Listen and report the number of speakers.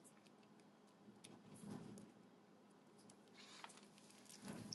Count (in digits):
0